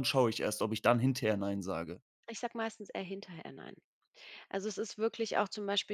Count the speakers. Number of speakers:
two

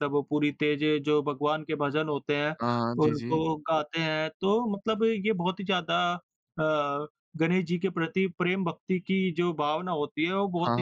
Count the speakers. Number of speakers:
two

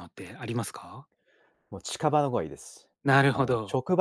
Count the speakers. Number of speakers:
two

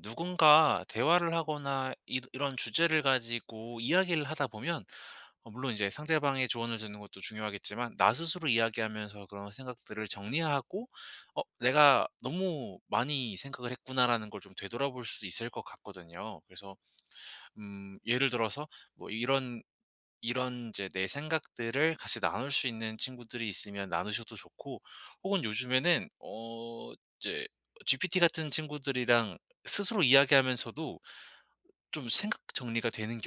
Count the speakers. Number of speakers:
one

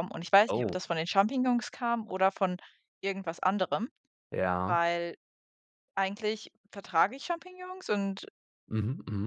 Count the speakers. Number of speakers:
two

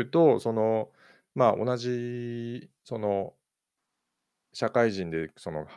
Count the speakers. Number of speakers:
one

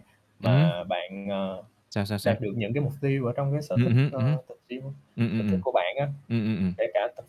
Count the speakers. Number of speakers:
two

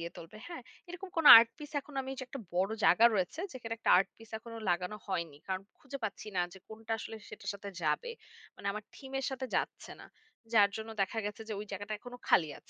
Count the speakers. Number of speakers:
one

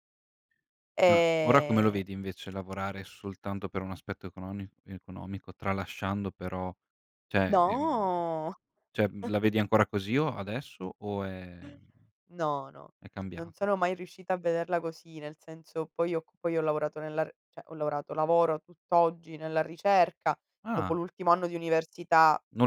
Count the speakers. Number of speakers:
two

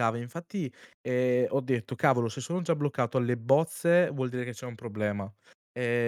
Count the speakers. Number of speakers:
one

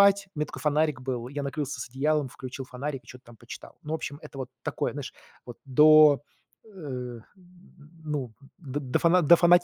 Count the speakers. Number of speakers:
one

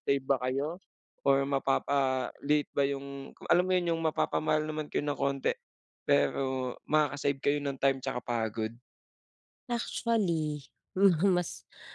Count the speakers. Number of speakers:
two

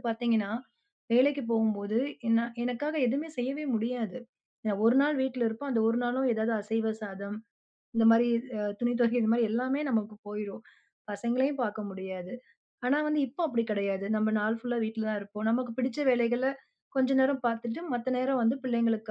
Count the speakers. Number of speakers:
one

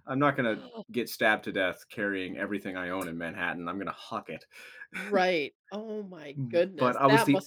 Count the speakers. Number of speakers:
two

